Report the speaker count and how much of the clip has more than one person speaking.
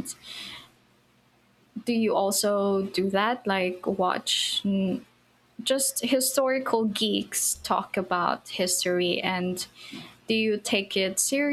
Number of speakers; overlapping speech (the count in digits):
1, no overlap